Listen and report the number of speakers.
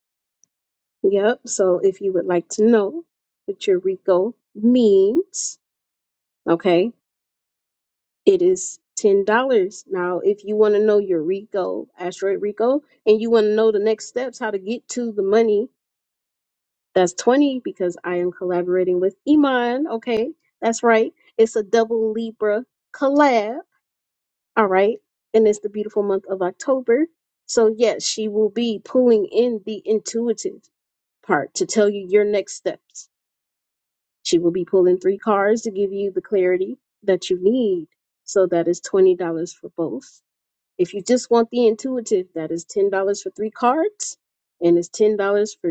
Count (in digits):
1